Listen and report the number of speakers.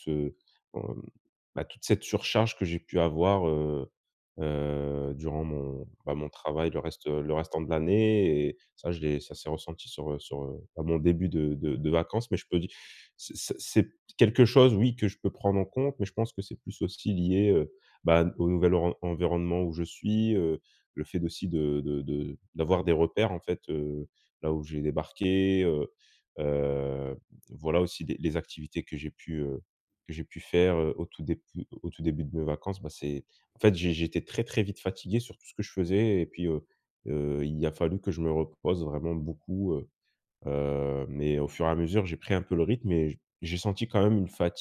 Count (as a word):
one